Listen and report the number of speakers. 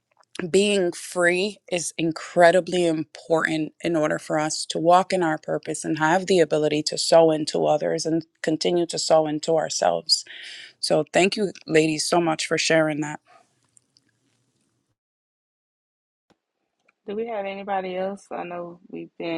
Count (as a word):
two